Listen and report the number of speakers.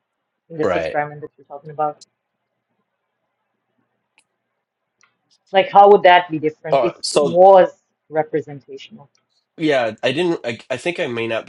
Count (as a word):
two